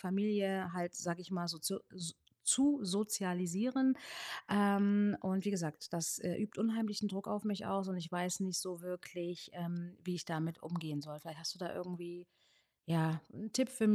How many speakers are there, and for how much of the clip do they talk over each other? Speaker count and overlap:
one, no overlap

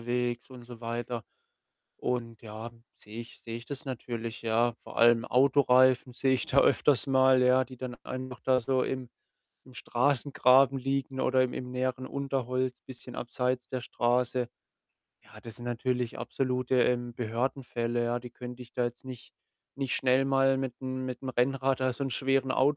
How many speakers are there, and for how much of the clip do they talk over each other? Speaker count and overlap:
one, no overlap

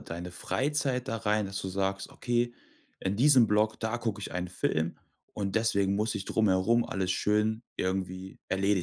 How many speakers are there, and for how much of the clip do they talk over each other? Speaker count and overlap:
one, no overlap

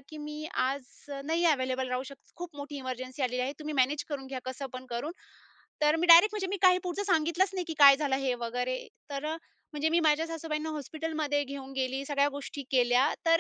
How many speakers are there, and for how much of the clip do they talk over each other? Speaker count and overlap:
one, no overlap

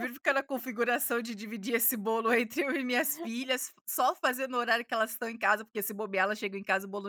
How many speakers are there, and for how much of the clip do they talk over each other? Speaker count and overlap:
one, no overlap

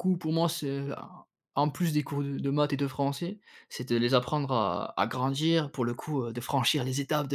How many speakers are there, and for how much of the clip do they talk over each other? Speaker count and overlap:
one, no overlap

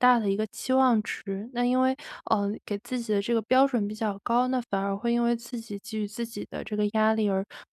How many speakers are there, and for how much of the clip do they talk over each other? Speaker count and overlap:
one, no overlap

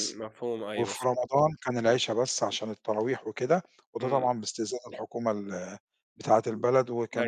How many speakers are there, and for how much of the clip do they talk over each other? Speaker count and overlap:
two, about 11%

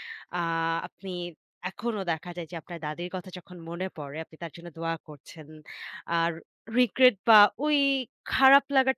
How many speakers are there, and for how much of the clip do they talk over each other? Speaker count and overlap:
one, no overlap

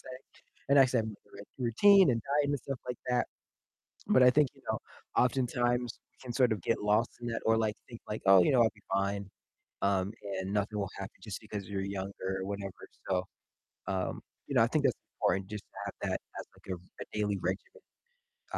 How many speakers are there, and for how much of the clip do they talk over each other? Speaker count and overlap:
one, no overlap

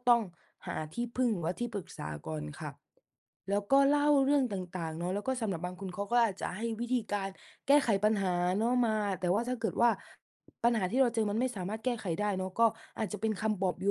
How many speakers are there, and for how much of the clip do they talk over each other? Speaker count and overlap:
one, no overlap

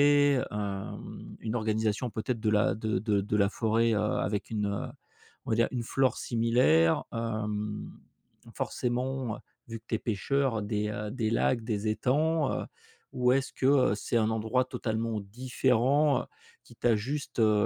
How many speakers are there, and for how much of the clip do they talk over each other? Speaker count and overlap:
one, no overlap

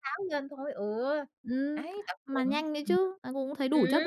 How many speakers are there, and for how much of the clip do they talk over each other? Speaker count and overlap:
two, about 20%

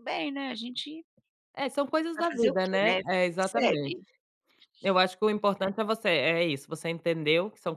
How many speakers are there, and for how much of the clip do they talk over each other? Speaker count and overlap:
two, about 24%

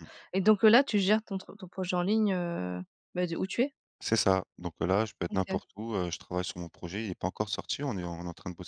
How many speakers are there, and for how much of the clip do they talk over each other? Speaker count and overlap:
two, about 3%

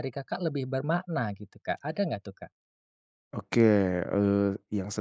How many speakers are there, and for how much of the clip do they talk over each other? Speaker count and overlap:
two, no overlap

